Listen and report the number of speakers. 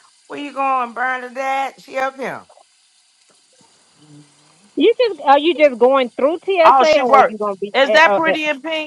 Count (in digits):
3